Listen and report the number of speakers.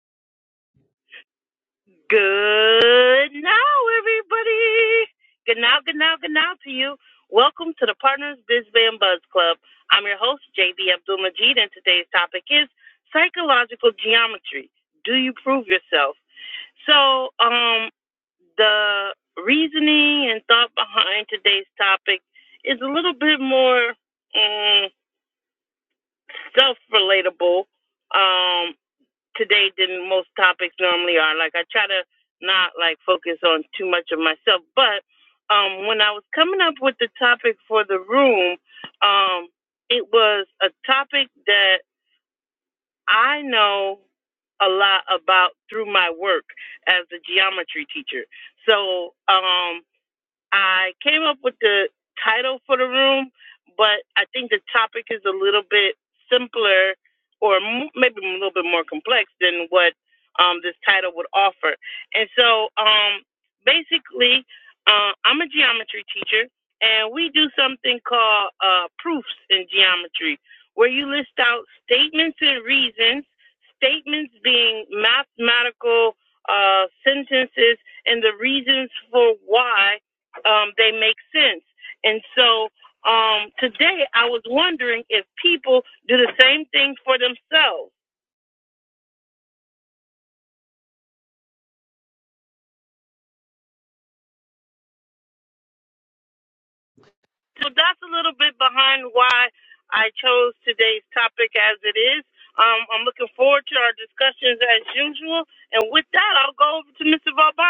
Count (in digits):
1